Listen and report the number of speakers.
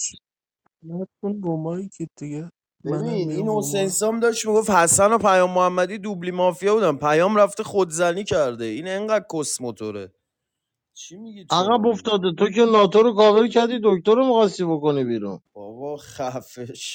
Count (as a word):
three